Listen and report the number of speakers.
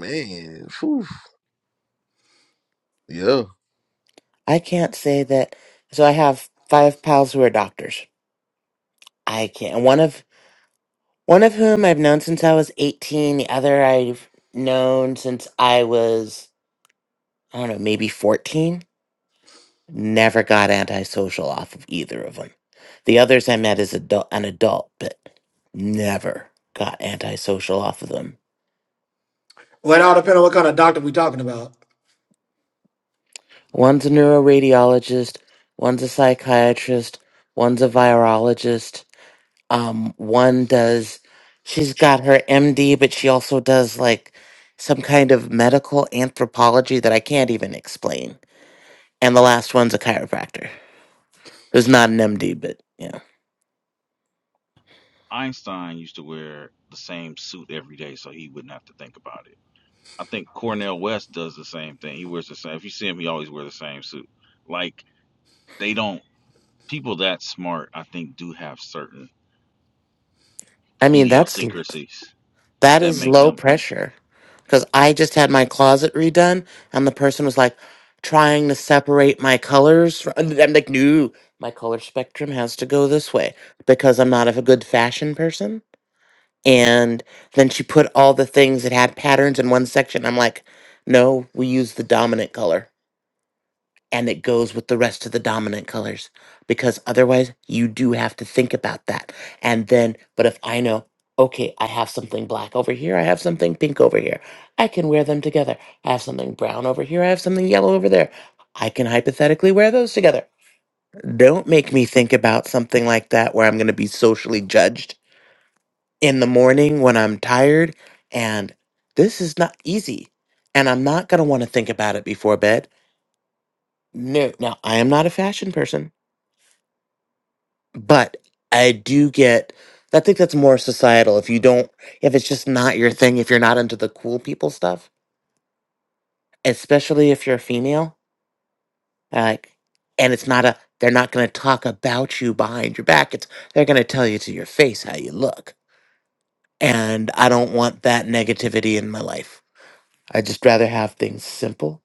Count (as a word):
four